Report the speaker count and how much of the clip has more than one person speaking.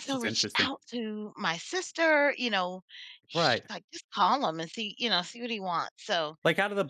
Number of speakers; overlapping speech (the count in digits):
2, about 12%